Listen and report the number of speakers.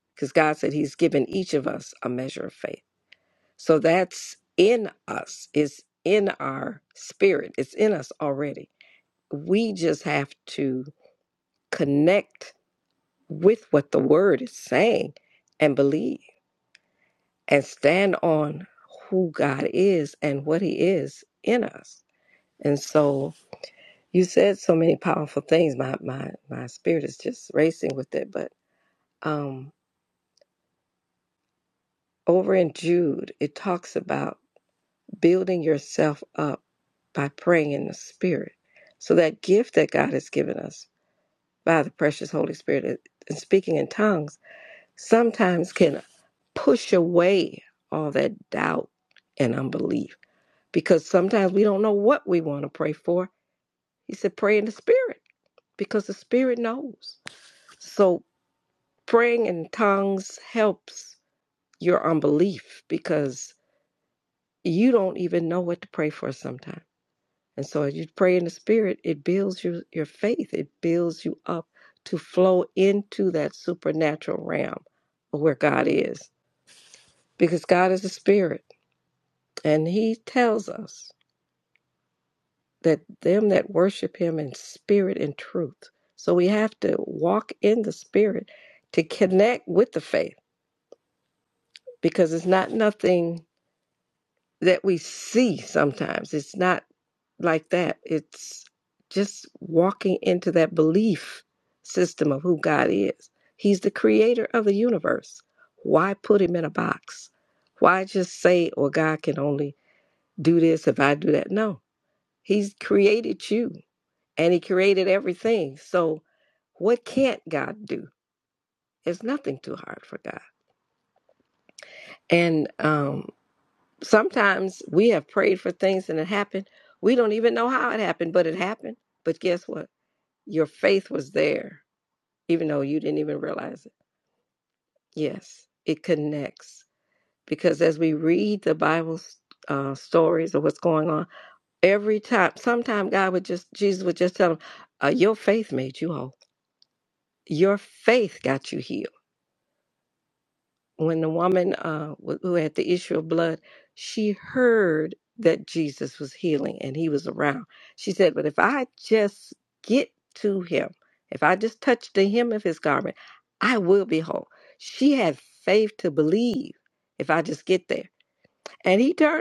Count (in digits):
1